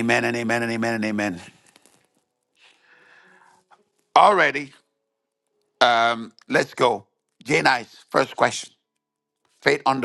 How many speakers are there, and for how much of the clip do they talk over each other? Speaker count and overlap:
1, no overlap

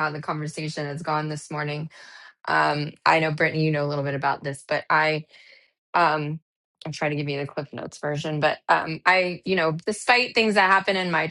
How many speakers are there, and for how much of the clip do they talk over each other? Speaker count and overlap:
1, no overlap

